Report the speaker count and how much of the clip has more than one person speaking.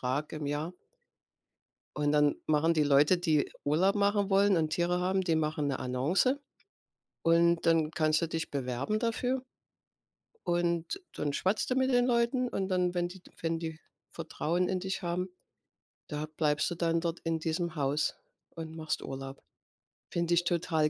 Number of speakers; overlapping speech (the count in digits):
1, no overlap